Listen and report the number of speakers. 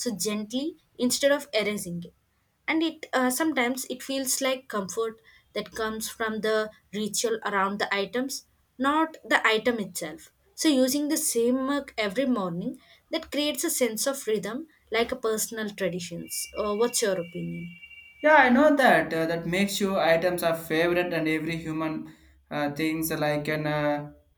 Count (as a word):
two